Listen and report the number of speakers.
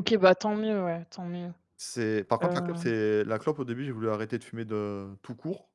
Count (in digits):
2